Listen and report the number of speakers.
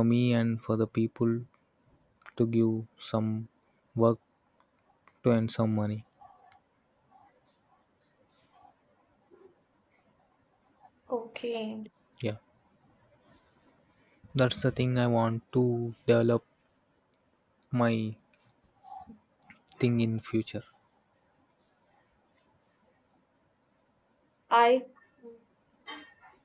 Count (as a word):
two